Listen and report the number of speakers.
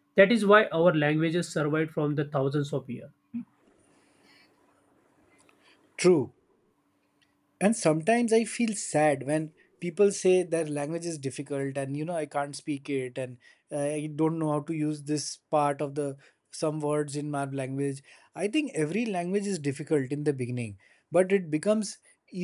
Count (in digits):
2